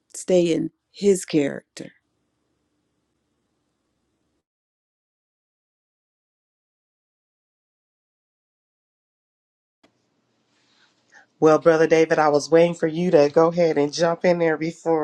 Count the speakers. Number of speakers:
two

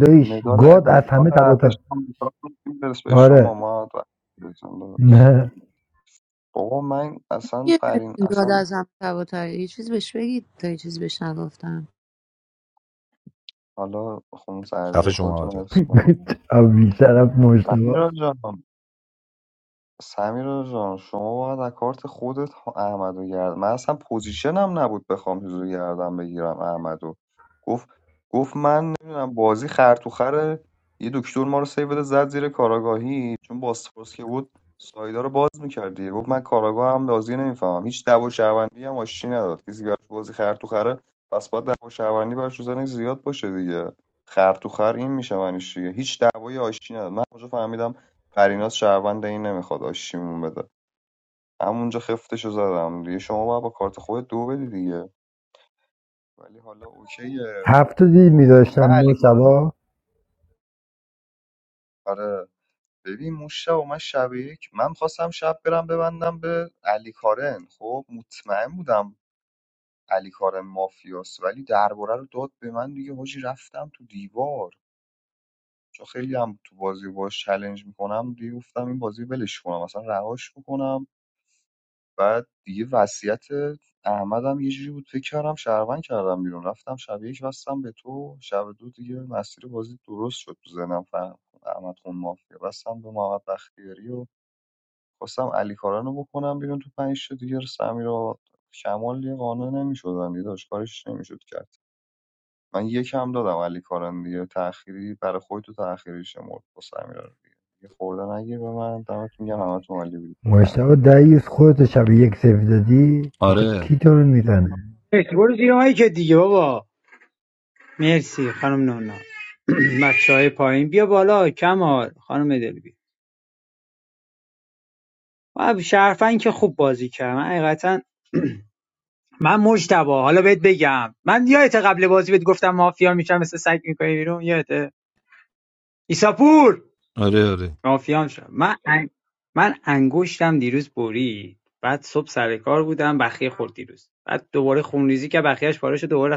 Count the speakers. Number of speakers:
five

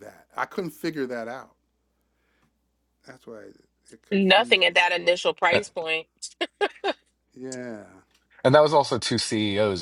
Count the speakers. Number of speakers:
three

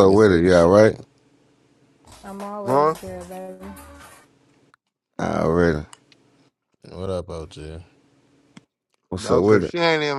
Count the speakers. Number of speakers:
four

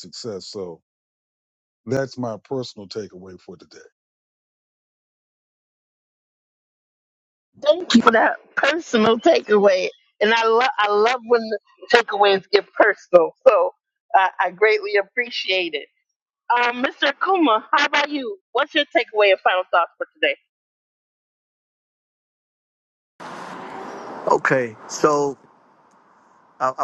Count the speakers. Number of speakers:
three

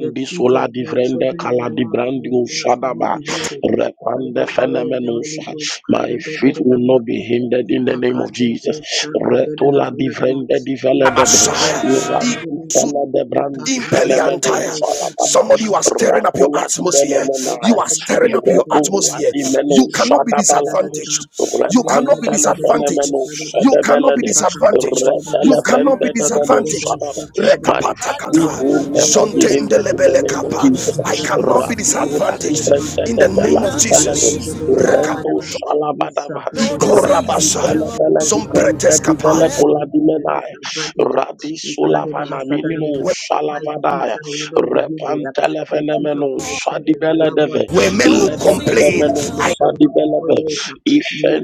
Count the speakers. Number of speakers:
three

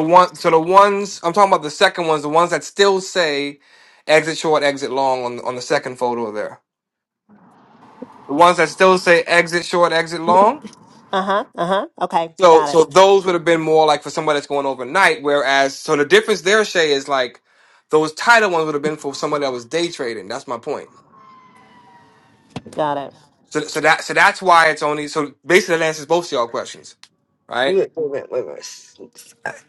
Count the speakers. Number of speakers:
three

